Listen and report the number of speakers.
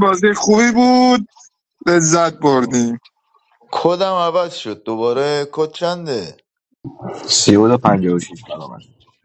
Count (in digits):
3